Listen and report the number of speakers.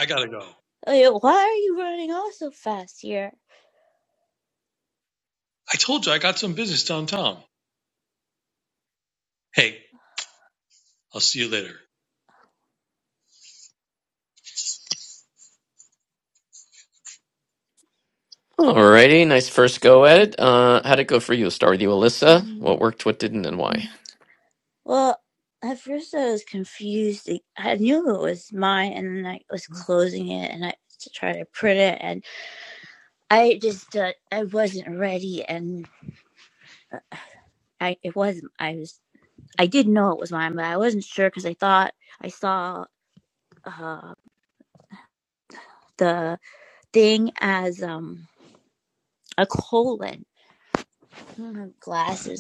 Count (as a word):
three